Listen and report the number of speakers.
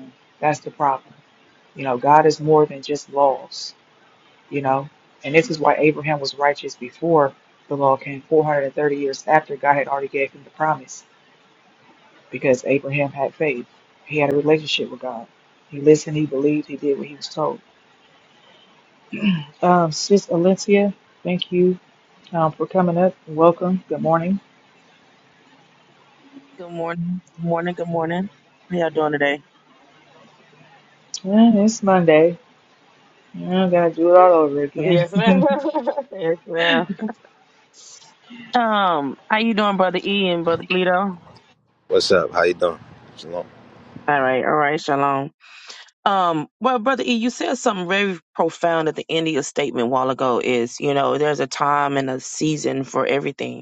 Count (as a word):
three